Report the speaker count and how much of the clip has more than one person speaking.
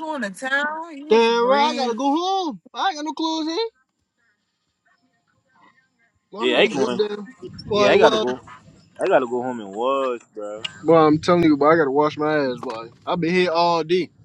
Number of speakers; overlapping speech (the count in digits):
3, about 14%